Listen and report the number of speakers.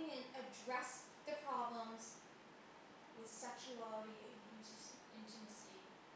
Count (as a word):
one